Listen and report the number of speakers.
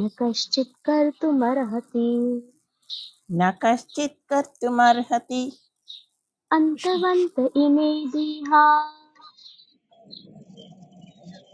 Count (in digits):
2